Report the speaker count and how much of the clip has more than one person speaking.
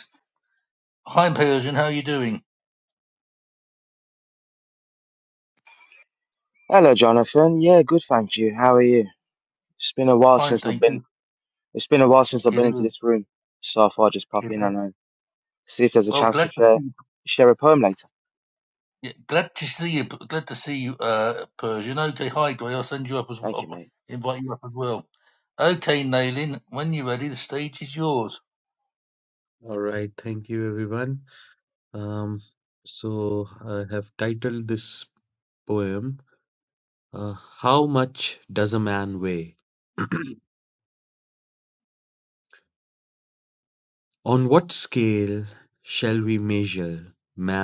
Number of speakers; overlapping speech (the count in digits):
3, about 5%